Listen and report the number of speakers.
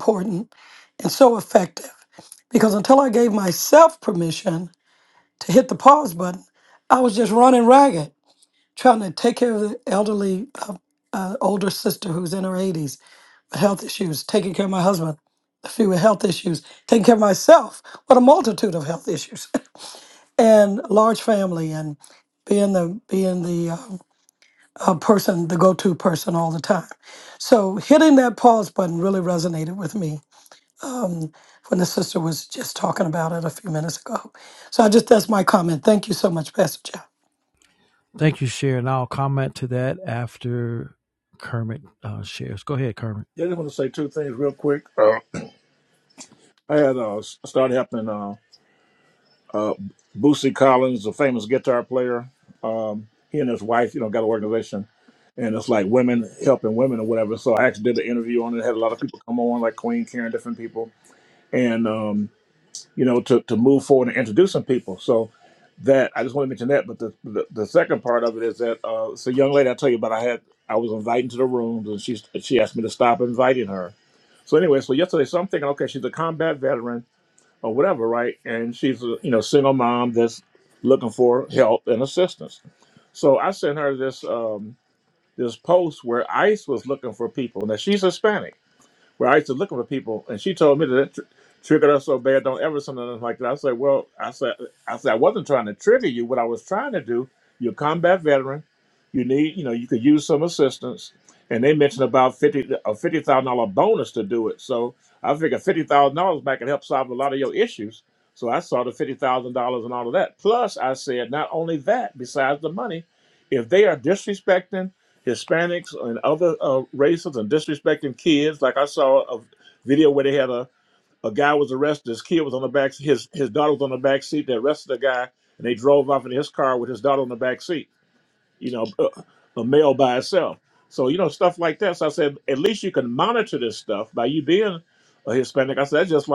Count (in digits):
3